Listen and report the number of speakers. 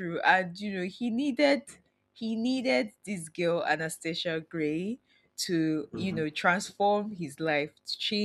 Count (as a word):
one